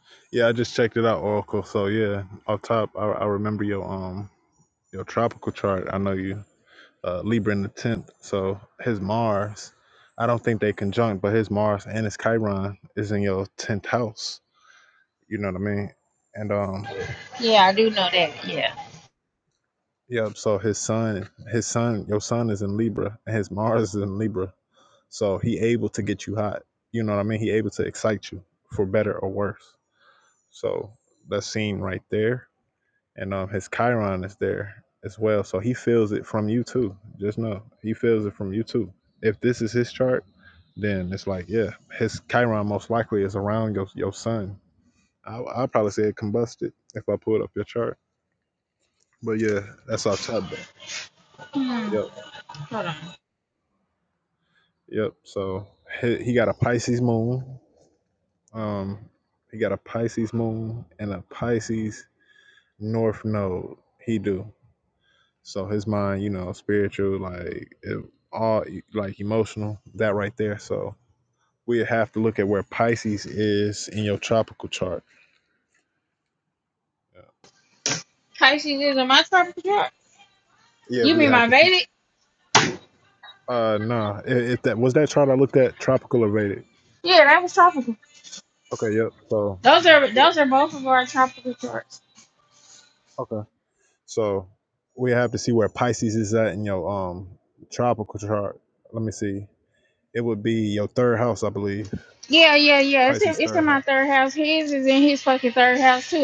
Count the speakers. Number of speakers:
two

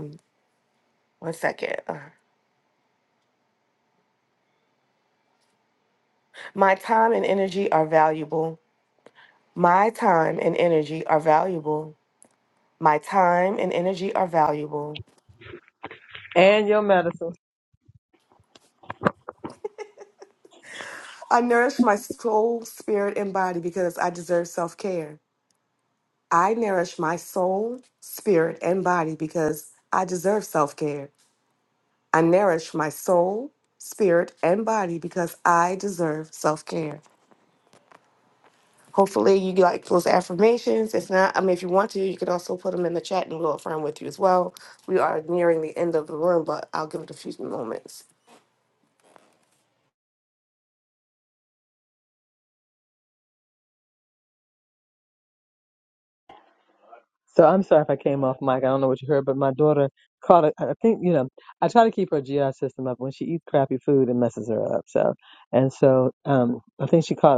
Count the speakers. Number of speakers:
two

